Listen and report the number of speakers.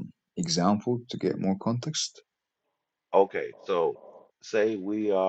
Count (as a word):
two